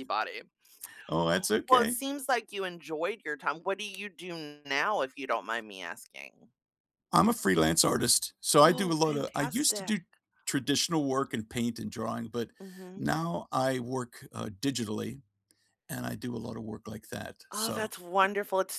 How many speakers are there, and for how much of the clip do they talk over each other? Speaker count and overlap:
2, about 11%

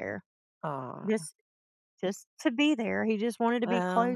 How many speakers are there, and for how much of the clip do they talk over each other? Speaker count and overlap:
2, about 15%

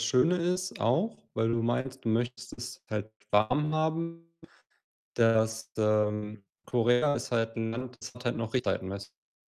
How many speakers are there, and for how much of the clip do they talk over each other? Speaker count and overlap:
1, no overlap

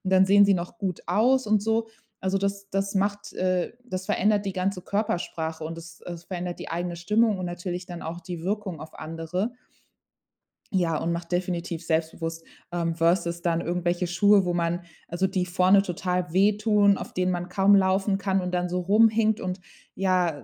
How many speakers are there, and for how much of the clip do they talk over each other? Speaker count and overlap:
1, no overlap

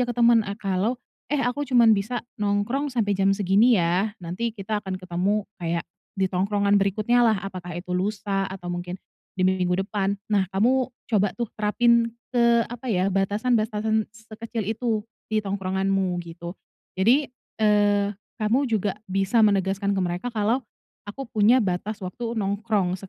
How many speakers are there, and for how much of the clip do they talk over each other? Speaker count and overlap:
1, no overlap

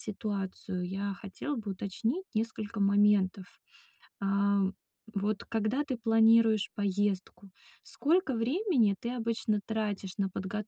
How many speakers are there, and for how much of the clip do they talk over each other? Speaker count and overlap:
1, no overlap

